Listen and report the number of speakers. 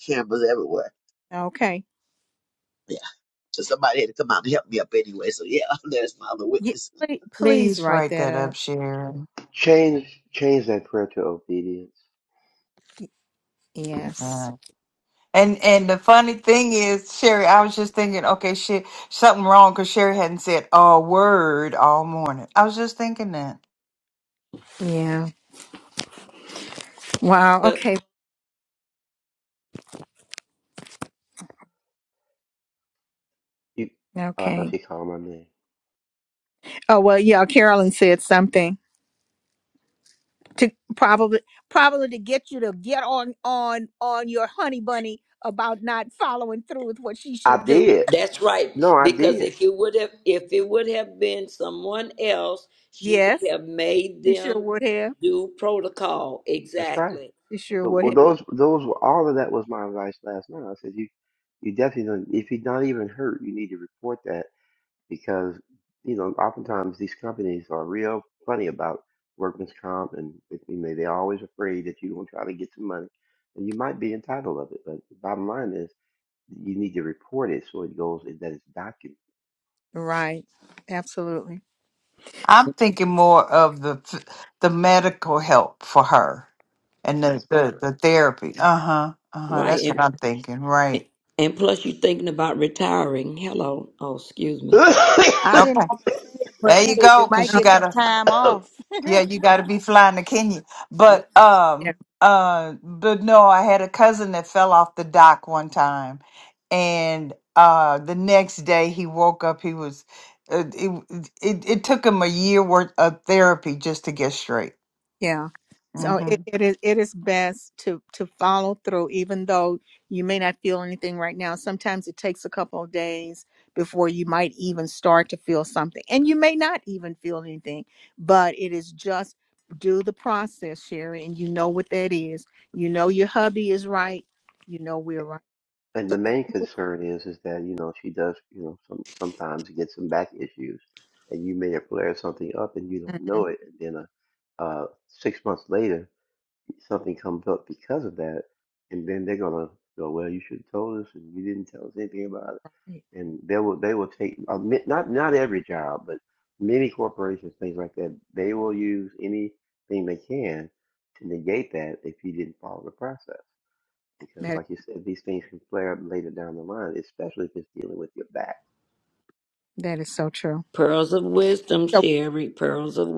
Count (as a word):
six